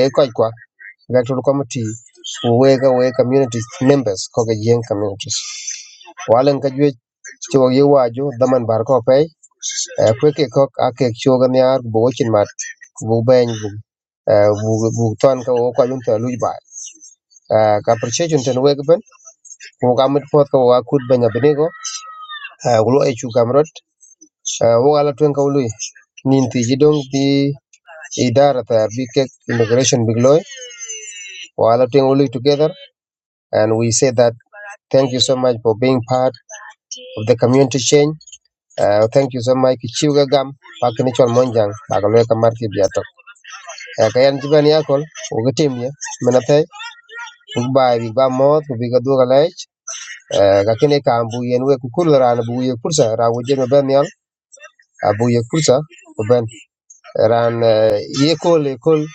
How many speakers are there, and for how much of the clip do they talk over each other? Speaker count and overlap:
one, no overlap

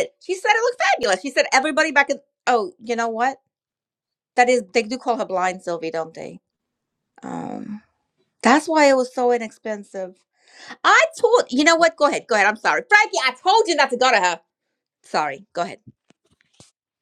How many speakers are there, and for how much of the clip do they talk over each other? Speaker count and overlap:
one, no overlap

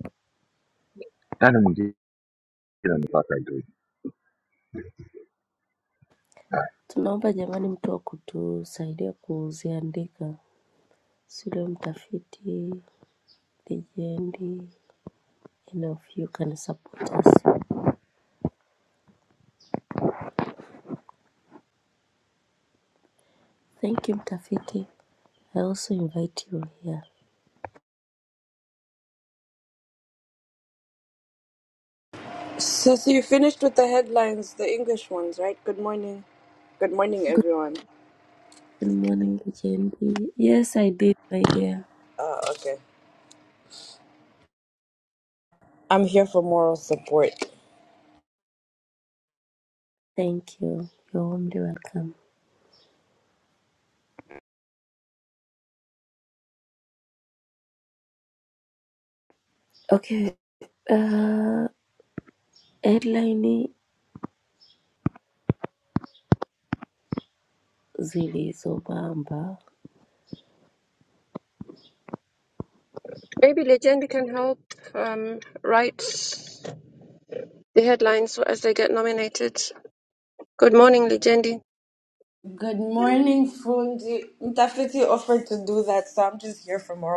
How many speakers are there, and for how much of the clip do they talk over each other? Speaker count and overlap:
four, under 1%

